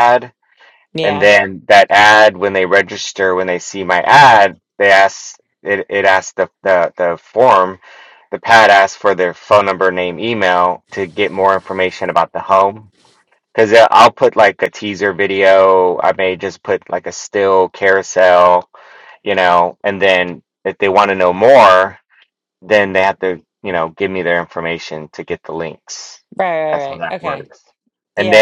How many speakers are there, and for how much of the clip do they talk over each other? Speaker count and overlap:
two, about 4%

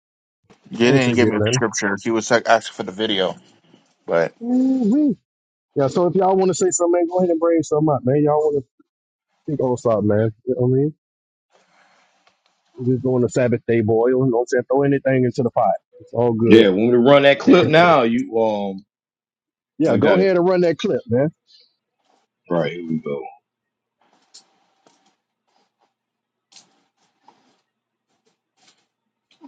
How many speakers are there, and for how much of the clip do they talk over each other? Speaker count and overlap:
three, about 5%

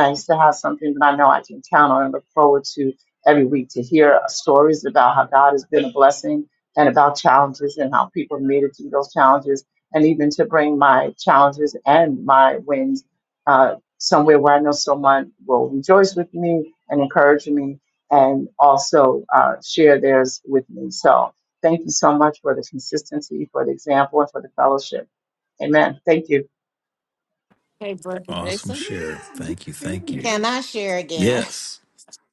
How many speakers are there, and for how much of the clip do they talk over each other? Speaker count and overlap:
three, about 3%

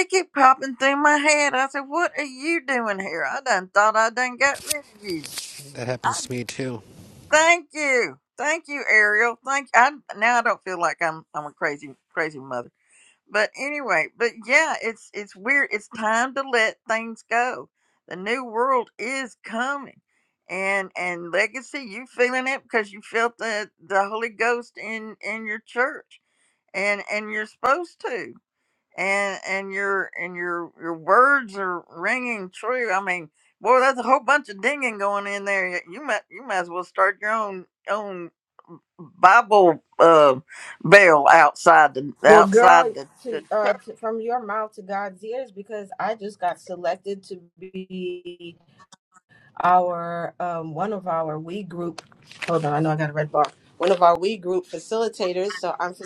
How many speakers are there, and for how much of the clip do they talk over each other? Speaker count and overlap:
three, about 2%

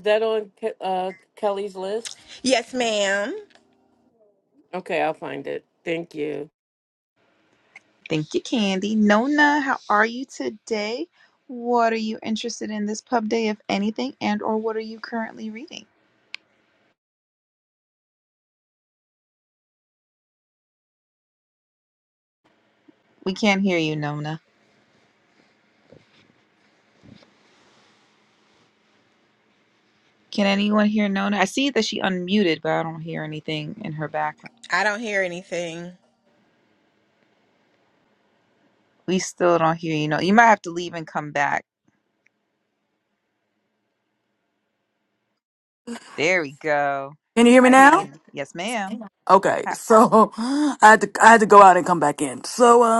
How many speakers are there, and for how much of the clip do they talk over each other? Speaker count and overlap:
four, about 1%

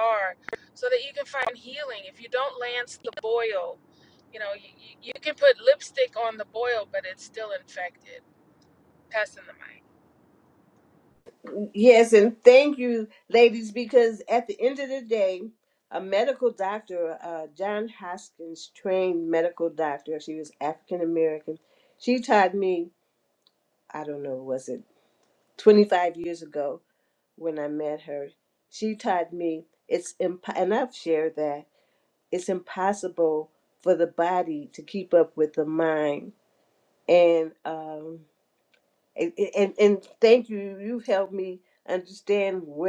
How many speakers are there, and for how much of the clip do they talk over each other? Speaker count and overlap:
two, no overlap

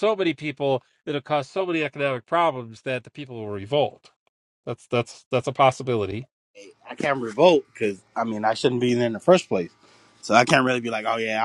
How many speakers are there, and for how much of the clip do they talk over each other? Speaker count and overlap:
two, no overlap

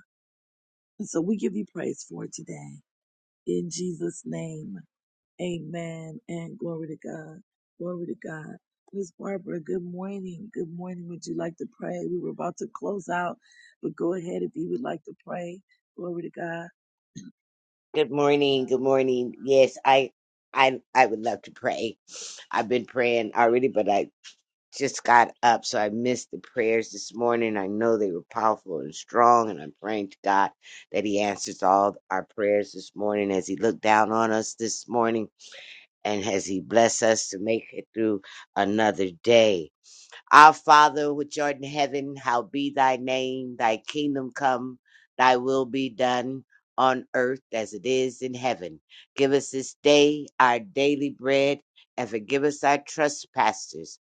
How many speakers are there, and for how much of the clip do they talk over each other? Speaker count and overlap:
two, no overlap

